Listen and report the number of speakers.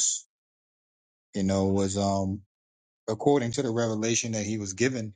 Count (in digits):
1